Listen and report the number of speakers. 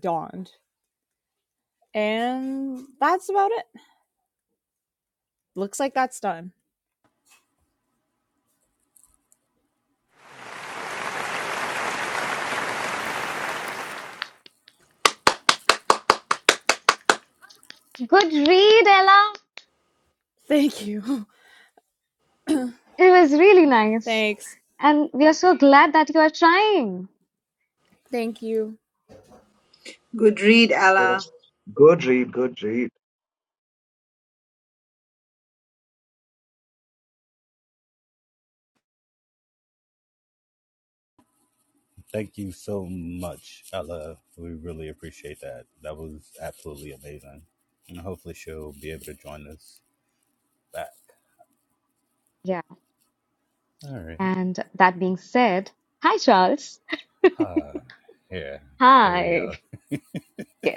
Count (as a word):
five